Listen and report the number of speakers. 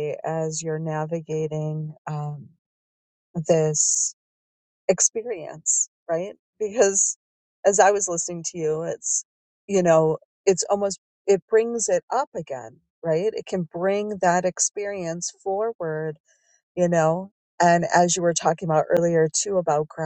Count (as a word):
one